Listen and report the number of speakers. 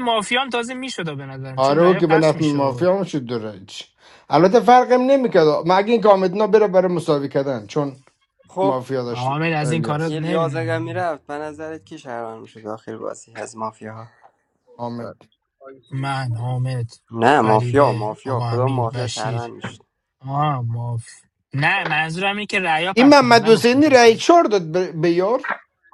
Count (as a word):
three